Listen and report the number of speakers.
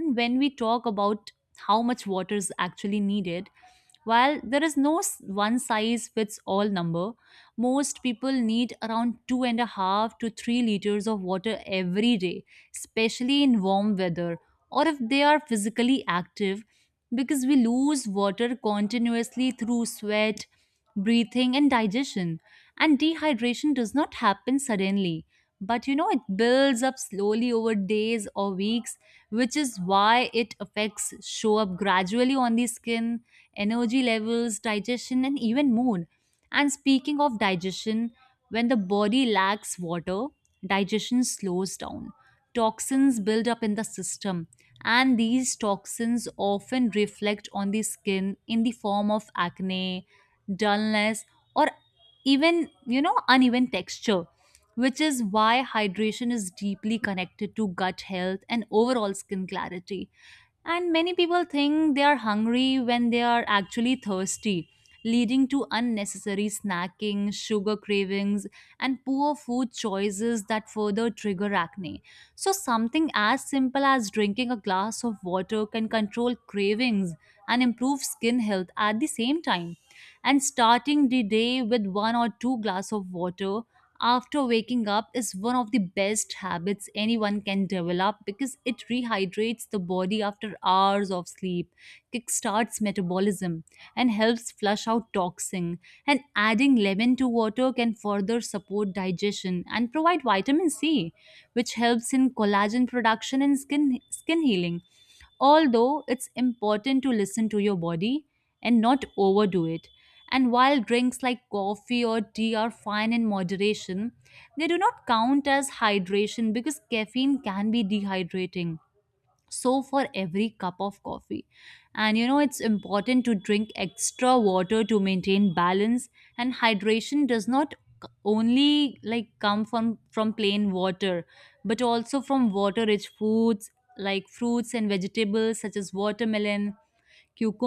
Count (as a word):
one